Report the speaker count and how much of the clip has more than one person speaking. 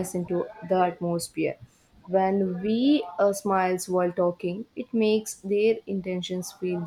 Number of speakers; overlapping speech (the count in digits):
1, no overlap